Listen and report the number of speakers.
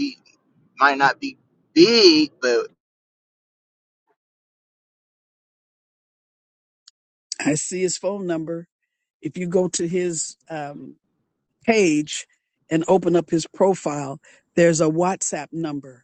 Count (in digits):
2